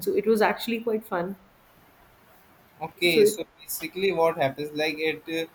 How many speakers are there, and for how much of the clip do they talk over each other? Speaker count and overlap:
2, about 6%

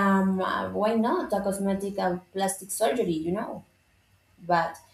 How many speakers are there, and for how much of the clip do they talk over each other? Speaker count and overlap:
1, no overlap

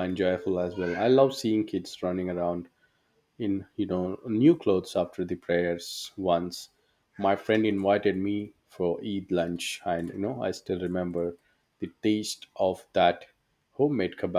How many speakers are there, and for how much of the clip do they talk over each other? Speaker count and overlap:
1, no overlap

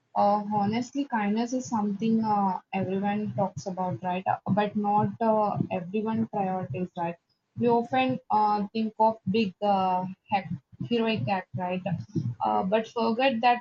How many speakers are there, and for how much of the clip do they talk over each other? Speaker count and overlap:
1, no overlap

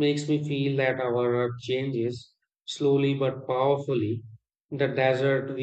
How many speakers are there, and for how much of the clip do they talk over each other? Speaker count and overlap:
1, no overlap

